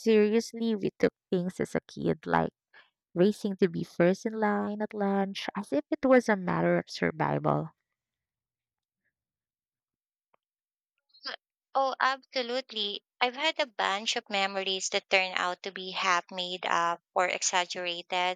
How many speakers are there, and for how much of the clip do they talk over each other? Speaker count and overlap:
2, no overlap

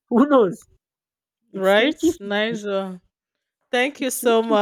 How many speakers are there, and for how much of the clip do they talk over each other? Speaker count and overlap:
2, about 37%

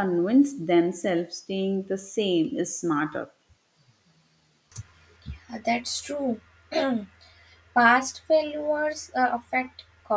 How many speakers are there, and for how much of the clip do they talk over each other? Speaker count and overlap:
2, no overlap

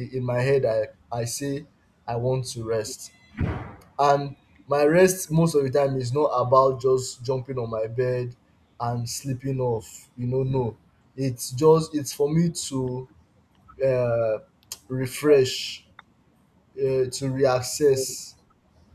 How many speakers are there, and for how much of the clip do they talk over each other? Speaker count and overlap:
1, no overlap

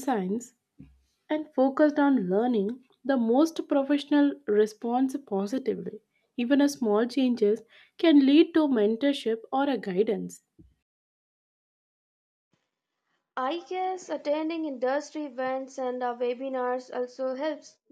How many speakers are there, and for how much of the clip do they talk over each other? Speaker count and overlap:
2, no overlap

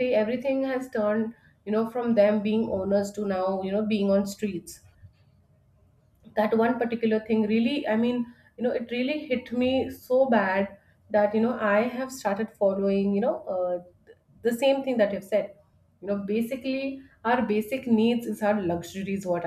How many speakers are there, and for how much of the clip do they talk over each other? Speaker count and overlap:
1, no overlap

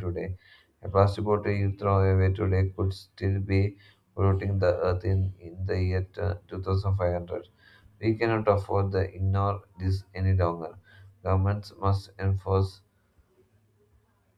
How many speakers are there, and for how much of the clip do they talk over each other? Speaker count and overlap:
1, no overlap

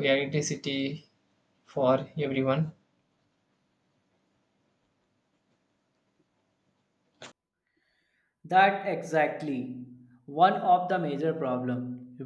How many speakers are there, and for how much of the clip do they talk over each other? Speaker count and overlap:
2, no overlap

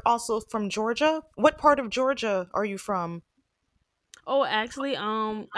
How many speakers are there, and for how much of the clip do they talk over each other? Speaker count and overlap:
2, no overlap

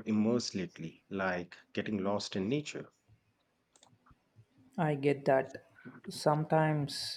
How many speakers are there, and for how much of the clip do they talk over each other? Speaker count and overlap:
2, no overlap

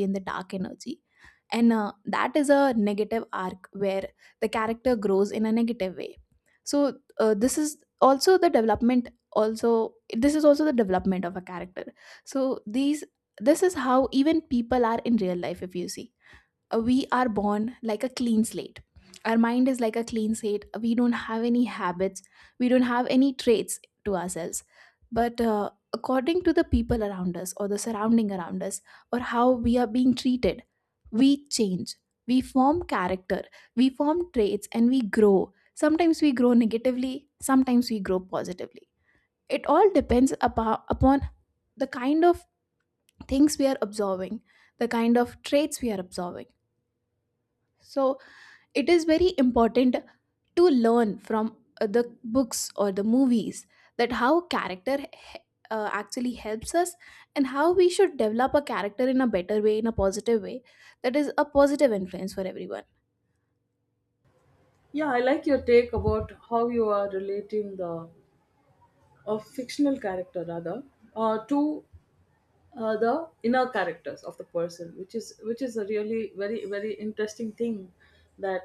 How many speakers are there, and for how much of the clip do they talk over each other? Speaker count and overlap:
2, no overlap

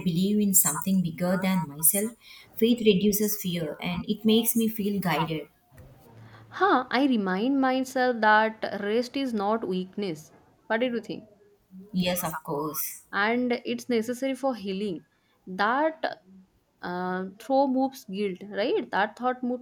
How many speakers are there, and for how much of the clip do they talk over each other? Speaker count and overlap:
2, no overlap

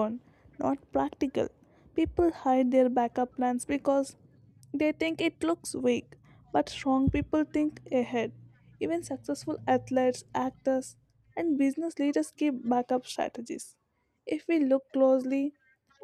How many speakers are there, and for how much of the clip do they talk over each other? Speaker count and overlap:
1, no overlap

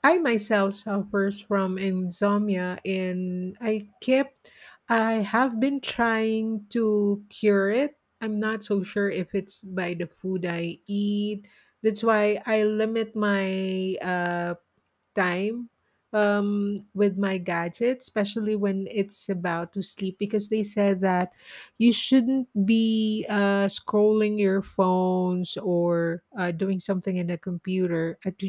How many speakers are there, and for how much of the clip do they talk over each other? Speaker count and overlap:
1, no overlap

